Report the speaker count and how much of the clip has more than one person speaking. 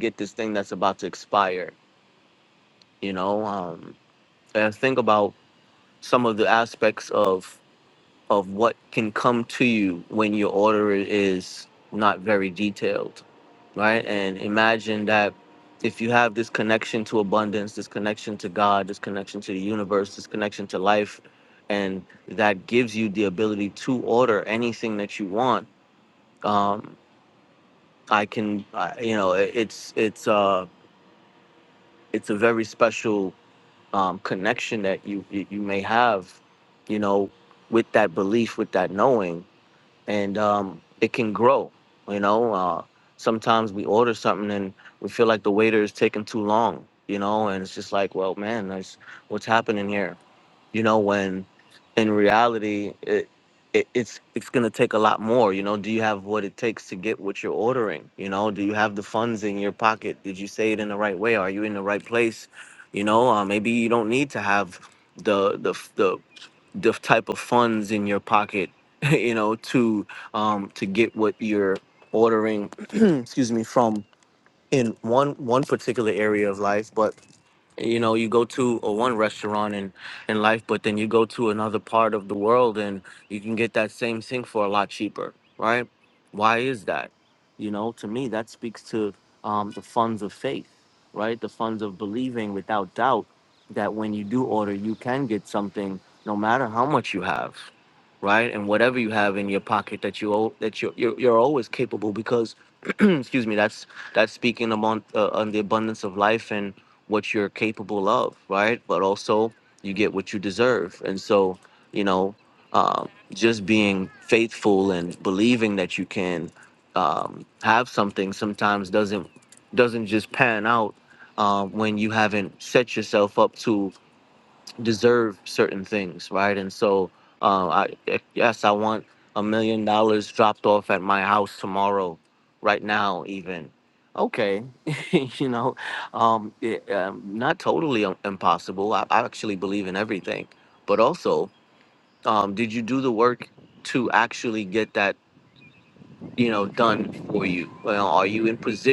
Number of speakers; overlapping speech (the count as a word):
one, no overlap